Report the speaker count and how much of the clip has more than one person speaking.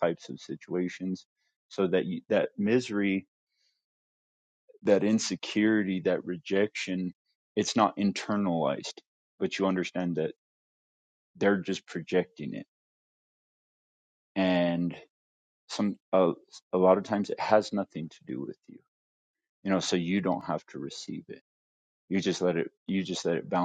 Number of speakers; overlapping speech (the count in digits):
1, no overlap